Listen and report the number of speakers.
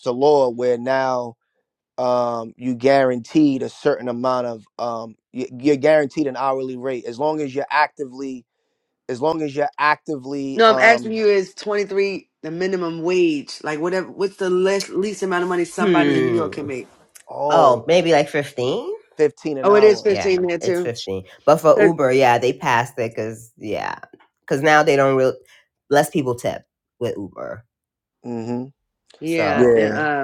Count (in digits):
3